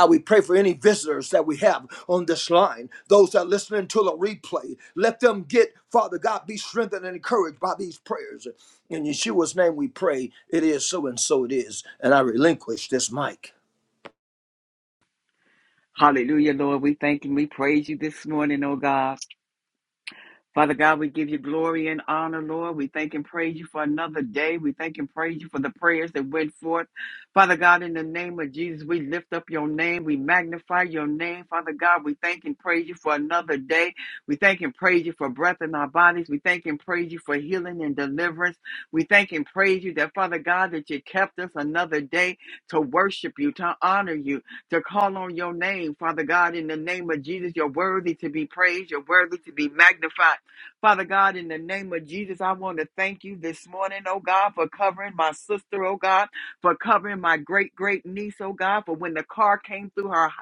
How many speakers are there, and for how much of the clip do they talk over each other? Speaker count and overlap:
2, no overlap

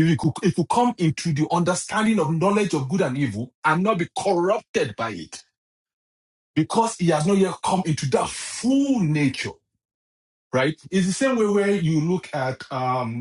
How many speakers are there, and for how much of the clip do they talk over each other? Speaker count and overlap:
1, no overlap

